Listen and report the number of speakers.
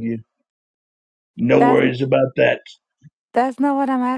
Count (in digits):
2